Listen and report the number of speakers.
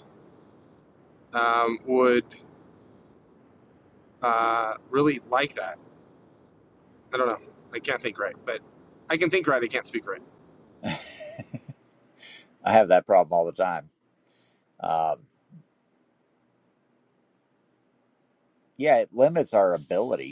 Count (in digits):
2